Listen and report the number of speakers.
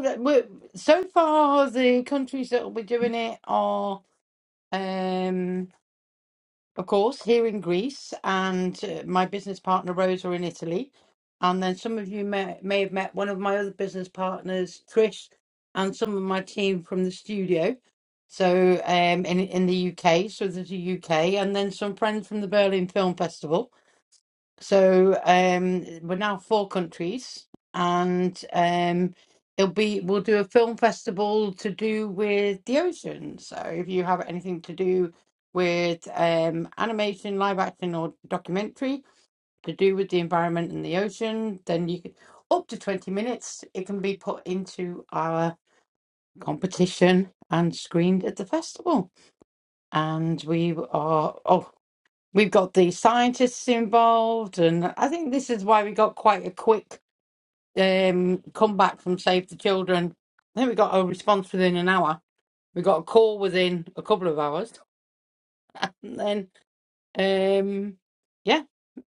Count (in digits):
1